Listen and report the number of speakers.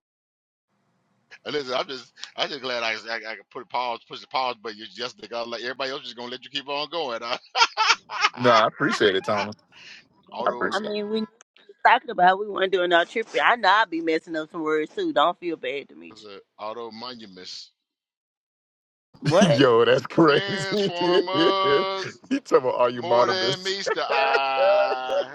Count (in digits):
3